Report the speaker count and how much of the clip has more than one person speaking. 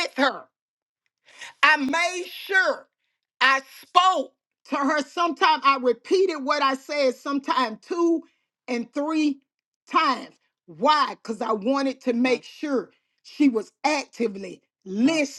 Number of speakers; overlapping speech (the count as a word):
one, no overlap